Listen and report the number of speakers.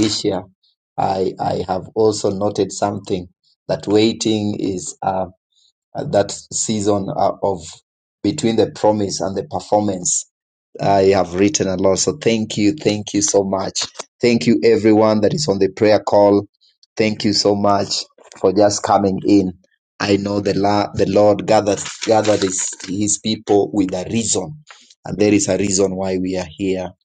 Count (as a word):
one